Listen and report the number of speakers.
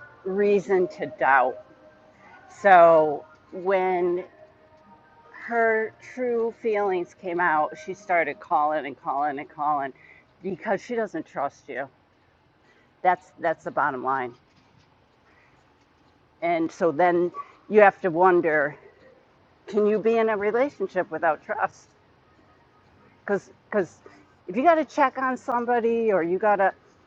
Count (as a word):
one